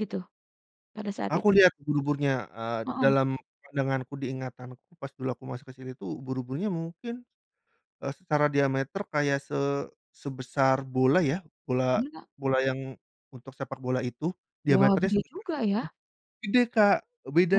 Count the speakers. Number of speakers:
2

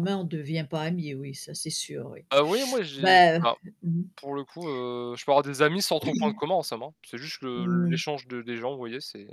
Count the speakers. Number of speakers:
2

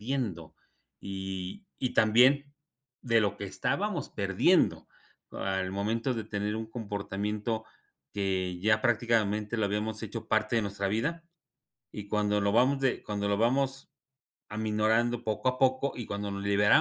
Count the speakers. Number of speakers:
1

